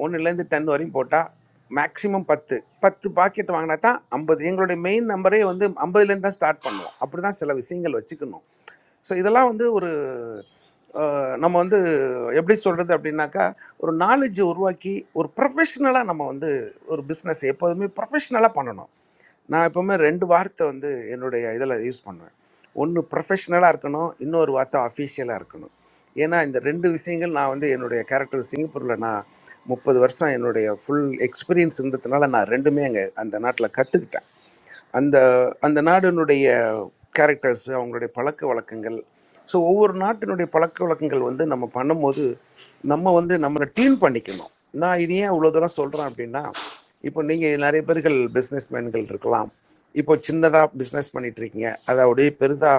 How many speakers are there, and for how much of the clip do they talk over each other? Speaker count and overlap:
one, no overlap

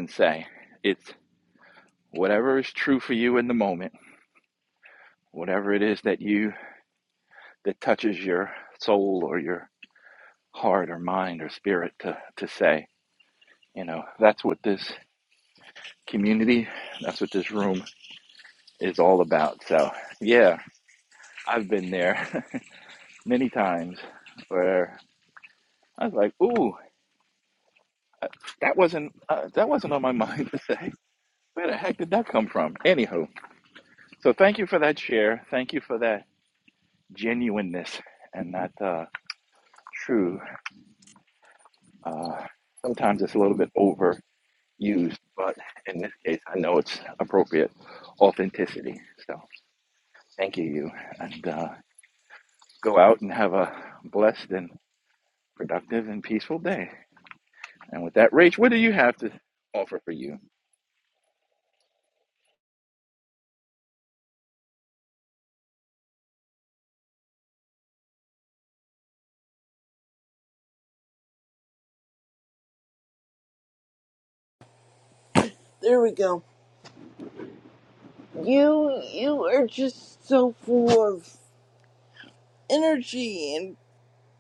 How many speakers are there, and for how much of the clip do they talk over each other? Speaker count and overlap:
two, no overlap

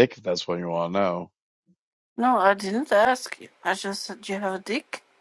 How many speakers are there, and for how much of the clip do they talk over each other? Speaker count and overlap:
two, no overlap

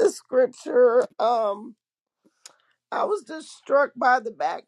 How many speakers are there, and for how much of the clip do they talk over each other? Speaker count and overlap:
one, no overlap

